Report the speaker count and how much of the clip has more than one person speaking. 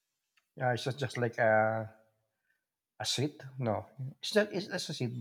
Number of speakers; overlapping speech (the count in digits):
1, no overlap